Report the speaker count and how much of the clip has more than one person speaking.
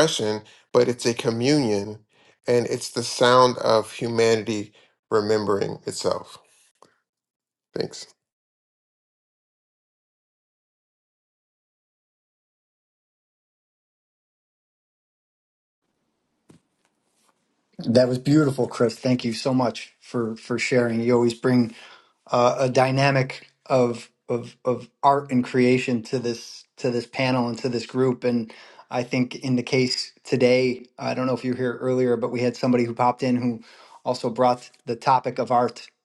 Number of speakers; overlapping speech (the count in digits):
2, no overlap